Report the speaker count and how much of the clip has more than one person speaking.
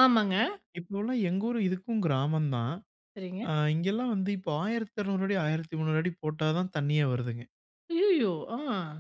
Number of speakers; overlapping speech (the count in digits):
2, under 1%